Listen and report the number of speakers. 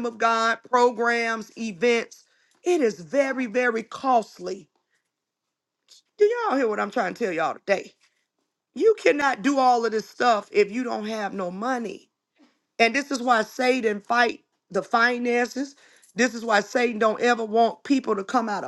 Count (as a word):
one